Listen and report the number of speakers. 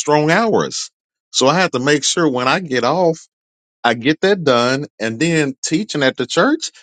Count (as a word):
one